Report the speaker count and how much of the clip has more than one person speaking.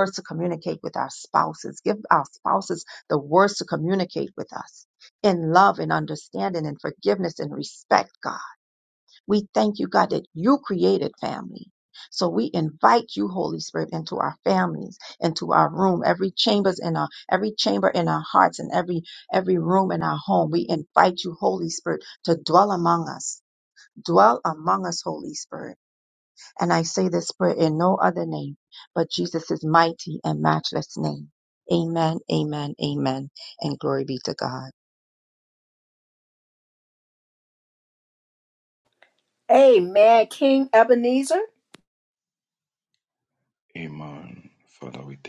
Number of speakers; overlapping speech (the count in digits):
3, no overlap